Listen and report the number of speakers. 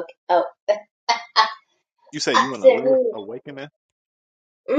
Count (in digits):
2